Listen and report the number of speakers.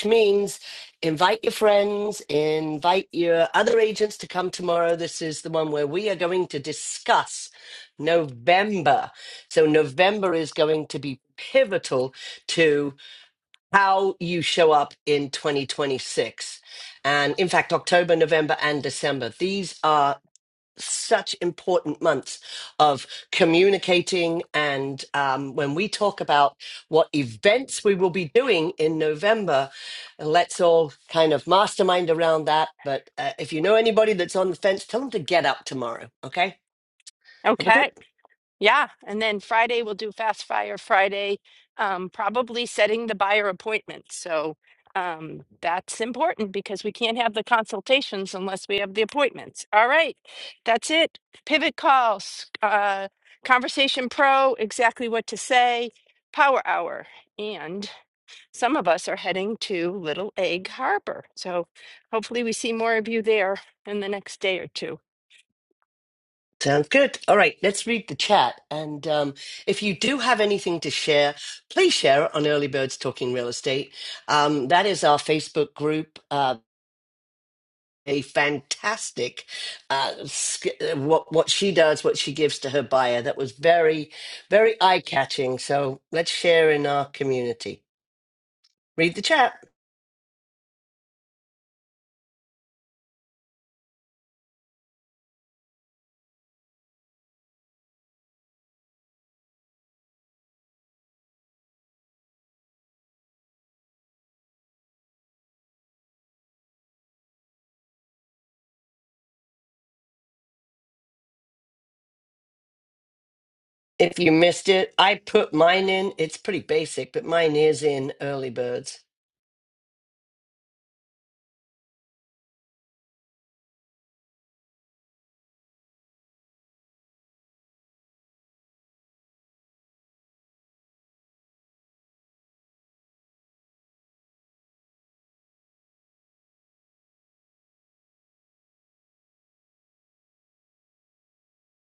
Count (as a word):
two